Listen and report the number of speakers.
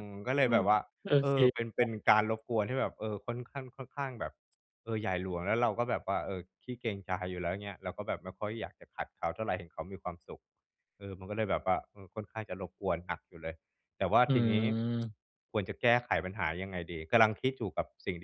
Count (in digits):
2